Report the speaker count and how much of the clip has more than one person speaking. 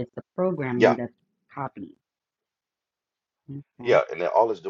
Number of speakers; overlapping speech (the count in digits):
2, about 8%